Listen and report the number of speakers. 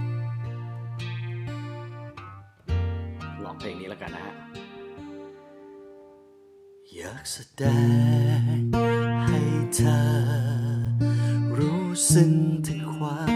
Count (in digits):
1